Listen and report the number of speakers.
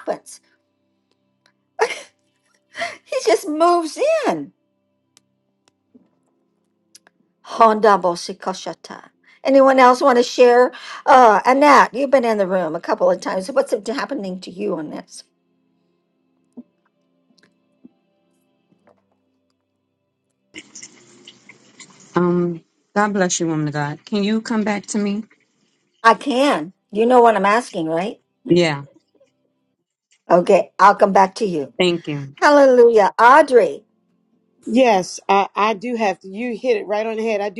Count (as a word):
three